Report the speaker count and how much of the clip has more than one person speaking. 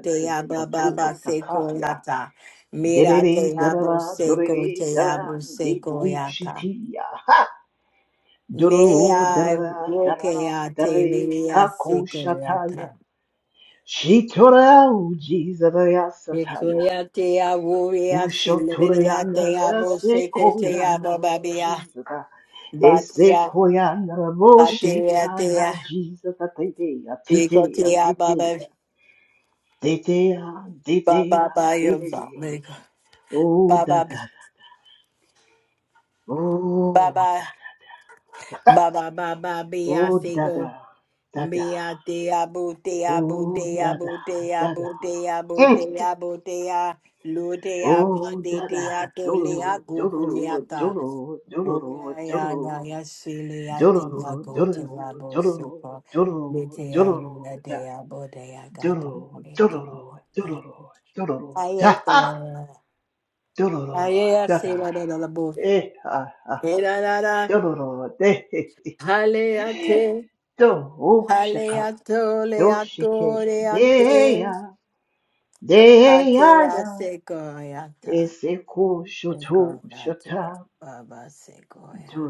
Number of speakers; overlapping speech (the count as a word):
two, about 40%